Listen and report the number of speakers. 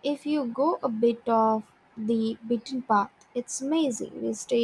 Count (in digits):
1